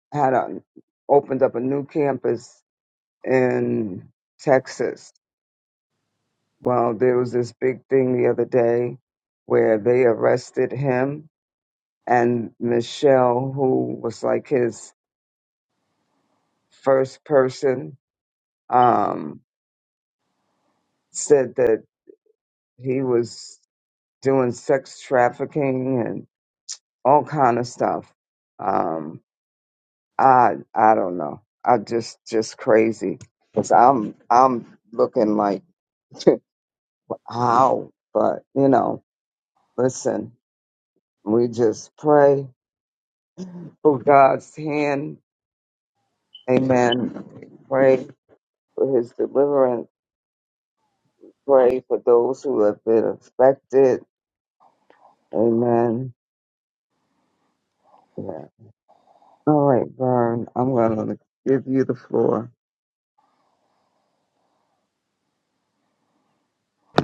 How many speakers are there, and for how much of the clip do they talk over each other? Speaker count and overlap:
one, no overlap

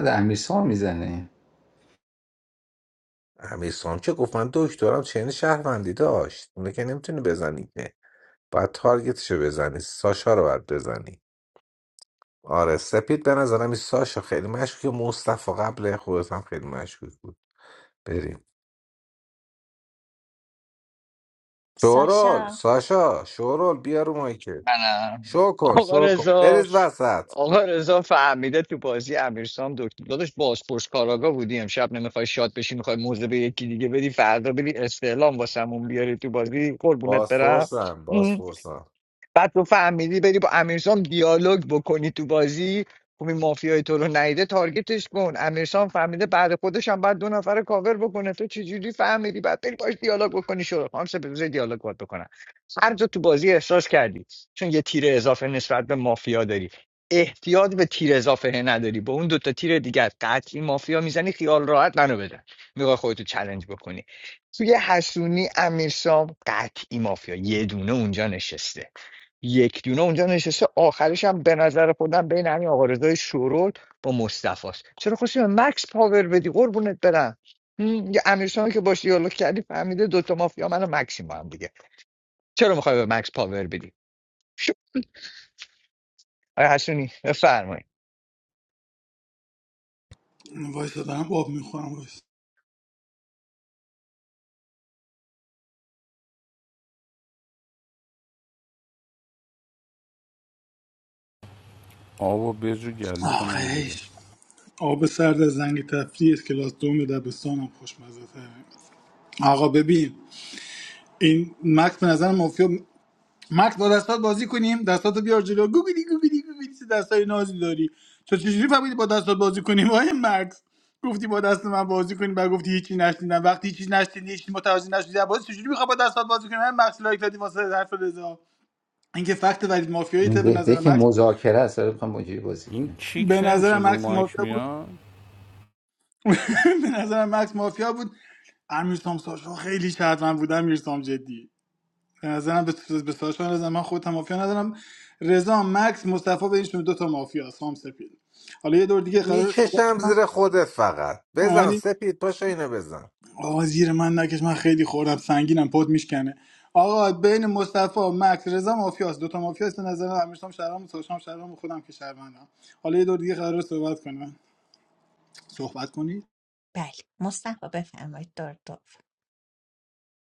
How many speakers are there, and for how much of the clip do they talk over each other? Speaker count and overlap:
six, about 4%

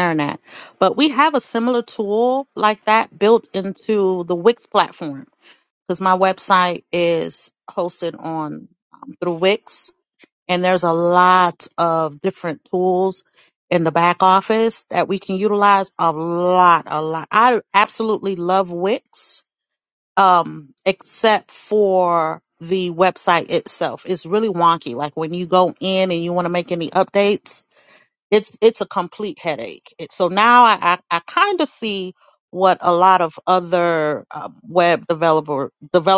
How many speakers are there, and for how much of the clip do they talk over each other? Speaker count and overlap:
one, no overlap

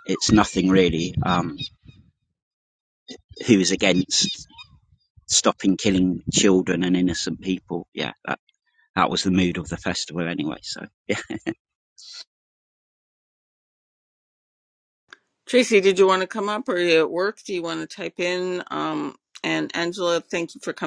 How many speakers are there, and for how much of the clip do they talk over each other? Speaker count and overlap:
two, no overlap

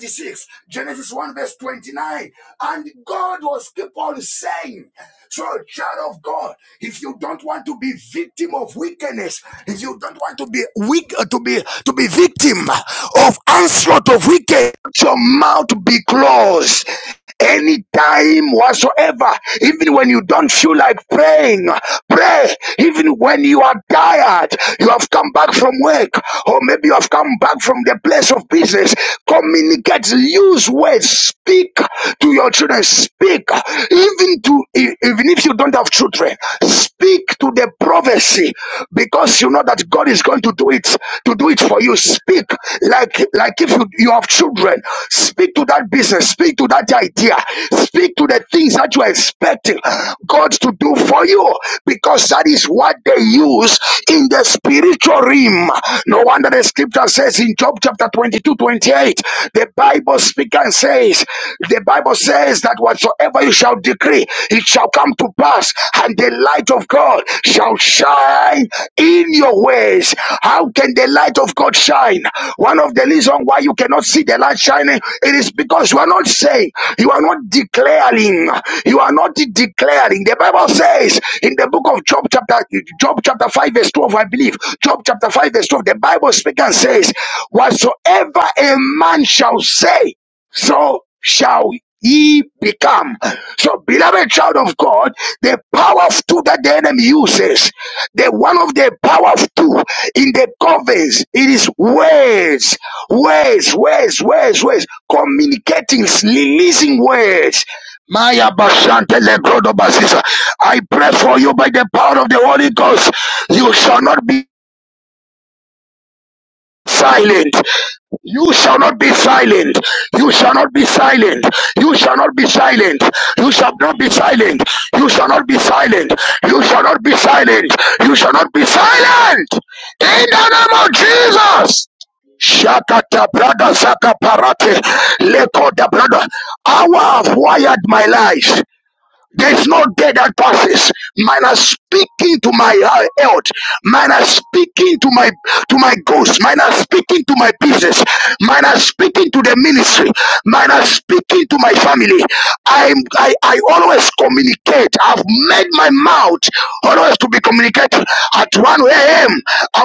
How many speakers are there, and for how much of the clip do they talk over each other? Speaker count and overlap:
one, no overlap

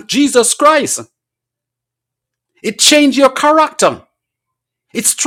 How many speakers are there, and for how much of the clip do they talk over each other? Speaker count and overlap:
one, no overlap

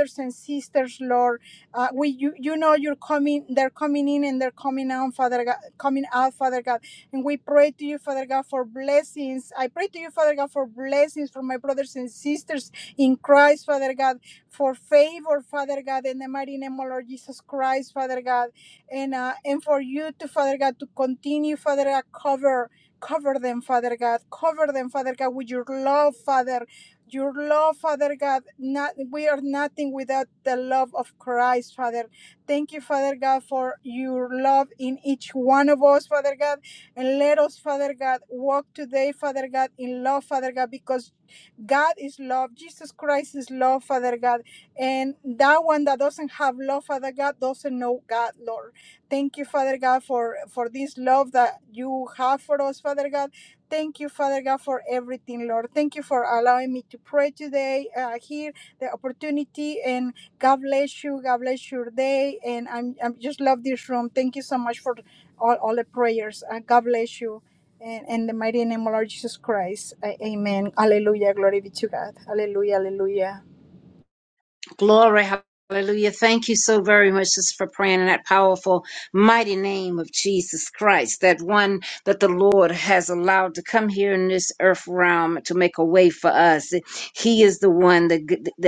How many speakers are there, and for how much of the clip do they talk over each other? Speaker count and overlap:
two, no overlap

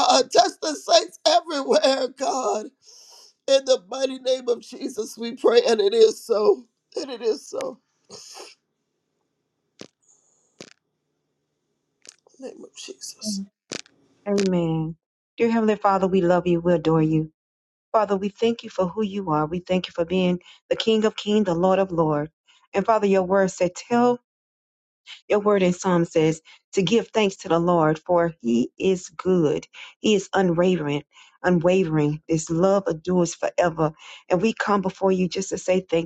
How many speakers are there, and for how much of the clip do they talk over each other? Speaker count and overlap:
two, no overlap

